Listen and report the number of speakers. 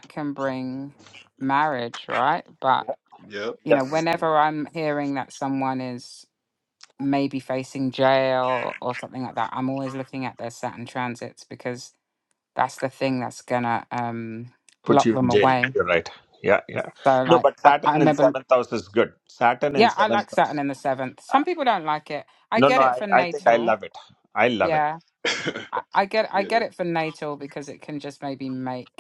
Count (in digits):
3